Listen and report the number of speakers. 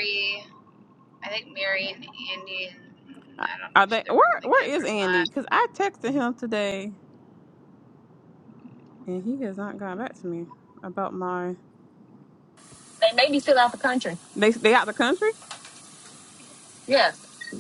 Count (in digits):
3